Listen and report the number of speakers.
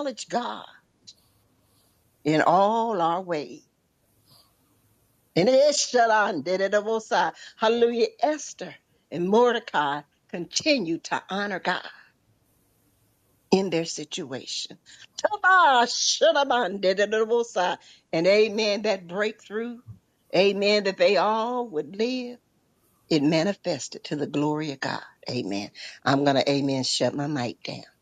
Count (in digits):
1